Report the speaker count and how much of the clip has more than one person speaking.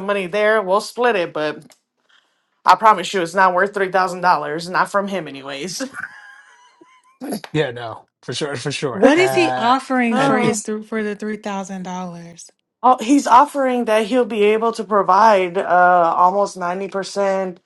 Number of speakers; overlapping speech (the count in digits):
3, about 7%